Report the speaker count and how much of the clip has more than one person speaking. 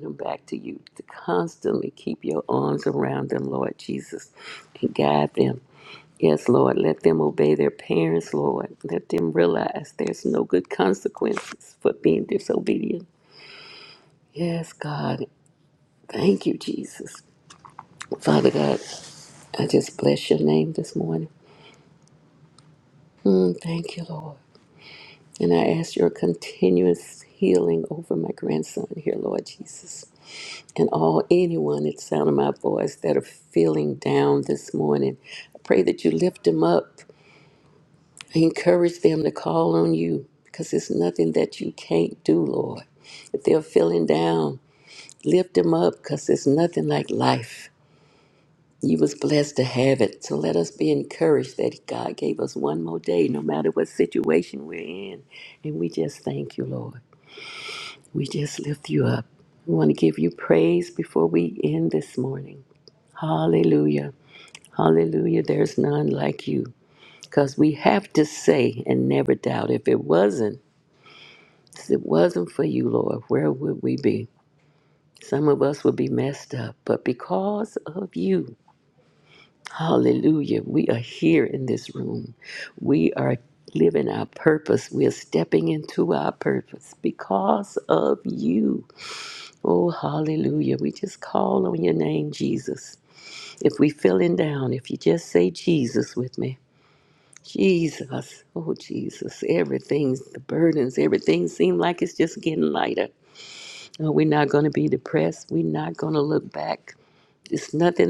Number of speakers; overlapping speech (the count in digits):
1, no overlap